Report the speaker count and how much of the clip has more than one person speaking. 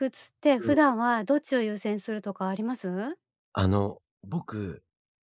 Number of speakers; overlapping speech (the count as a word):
two, about 4%